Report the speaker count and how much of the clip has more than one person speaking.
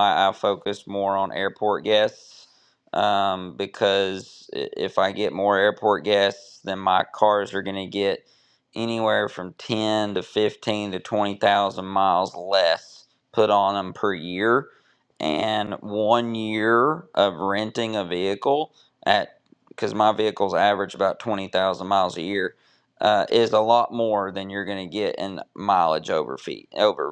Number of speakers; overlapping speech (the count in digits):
1, no overlap